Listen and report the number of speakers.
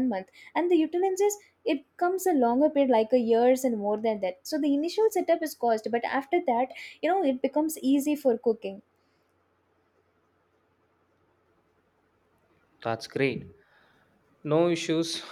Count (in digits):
2